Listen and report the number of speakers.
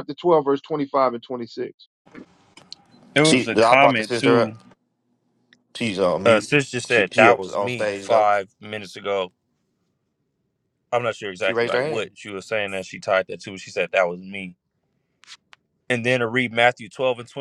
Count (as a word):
three